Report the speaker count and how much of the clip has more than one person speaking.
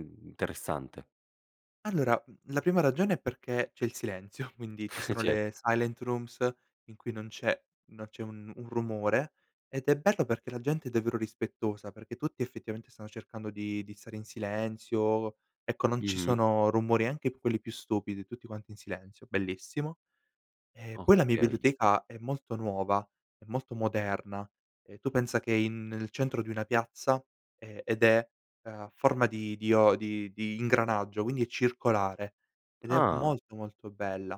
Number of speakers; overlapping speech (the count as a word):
two, about 5%